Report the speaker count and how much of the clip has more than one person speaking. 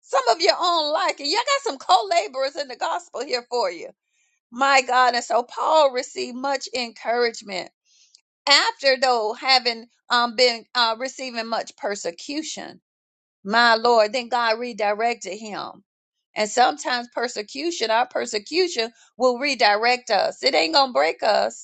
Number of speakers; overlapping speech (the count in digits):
1, no overlap